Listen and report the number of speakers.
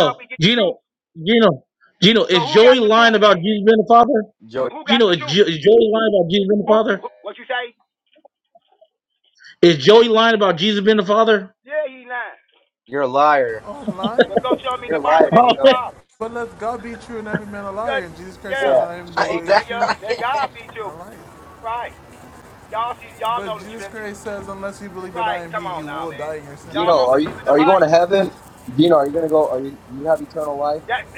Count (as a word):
four